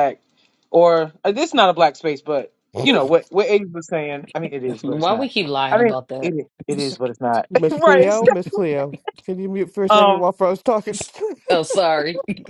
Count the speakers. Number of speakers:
three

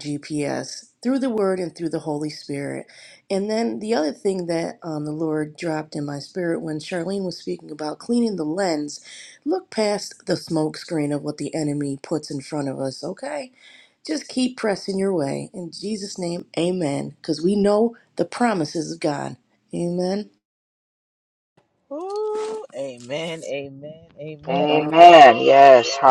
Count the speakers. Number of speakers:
three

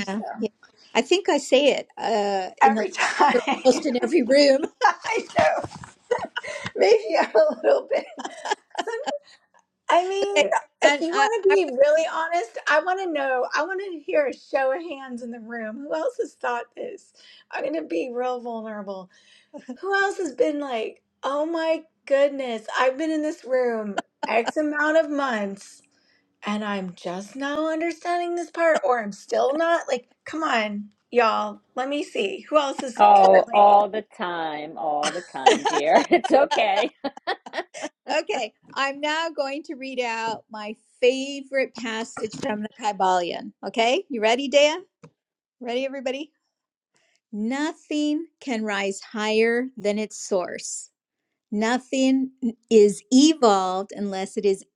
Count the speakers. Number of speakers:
three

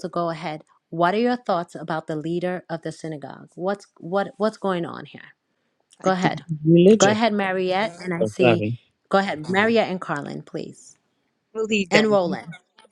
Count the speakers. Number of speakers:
two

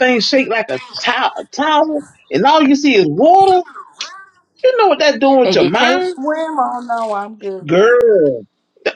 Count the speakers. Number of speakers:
two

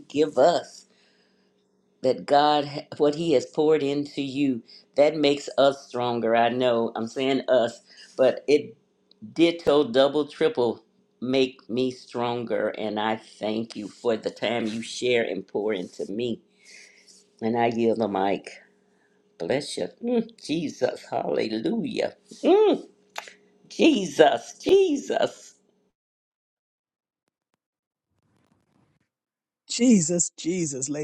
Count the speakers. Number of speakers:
two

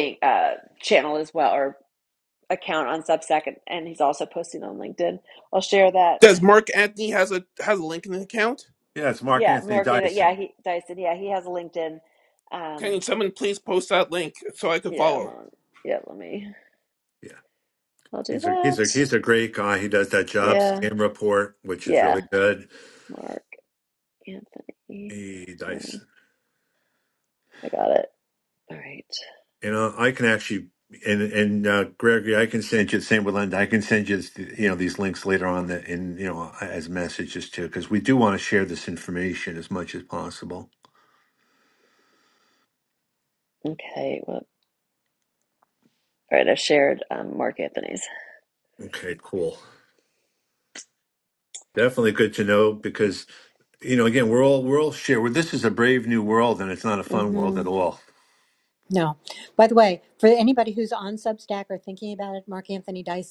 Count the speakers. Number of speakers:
four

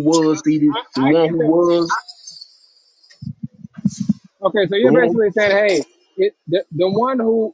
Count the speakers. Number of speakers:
two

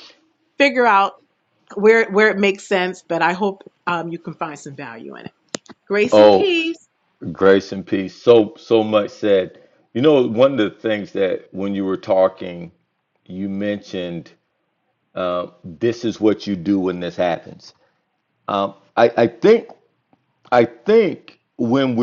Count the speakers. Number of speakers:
two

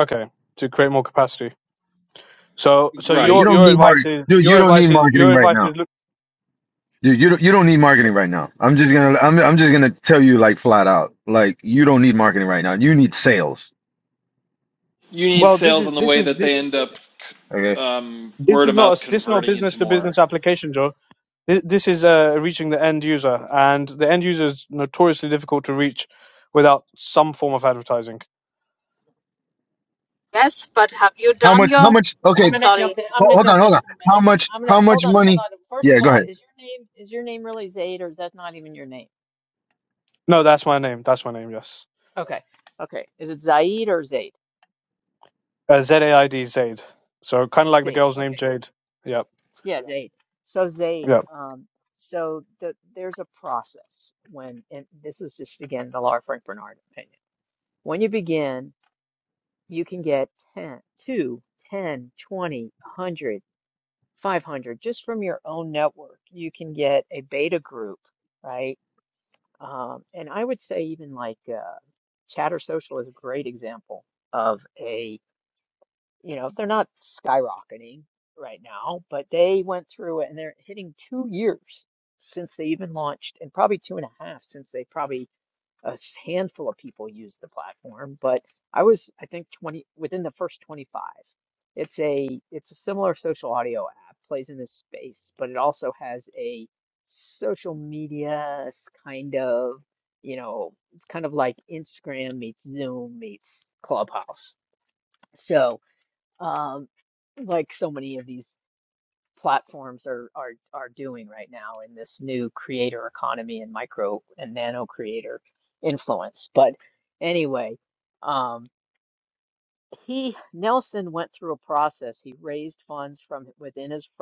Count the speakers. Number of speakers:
five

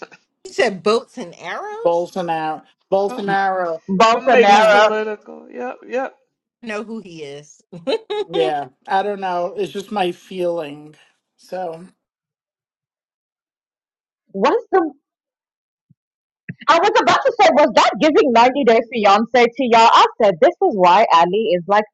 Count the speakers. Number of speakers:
four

